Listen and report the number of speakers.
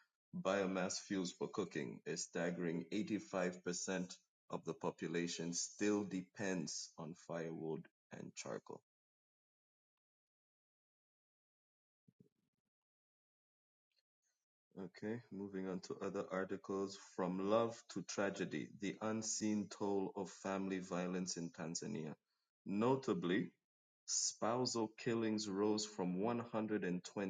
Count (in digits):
1